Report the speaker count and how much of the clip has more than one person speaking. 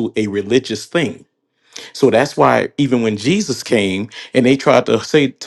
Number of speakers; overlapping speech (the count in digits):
1, no overlap